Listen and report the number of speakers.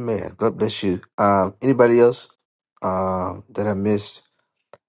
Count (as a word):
one